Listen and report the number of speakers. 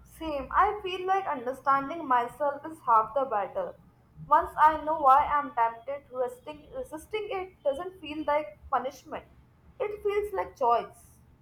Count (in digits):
1